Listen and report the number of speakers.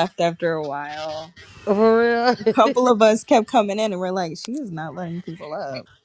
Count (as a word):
two